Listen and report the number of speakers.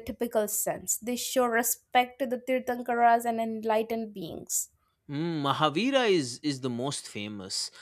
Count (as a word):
two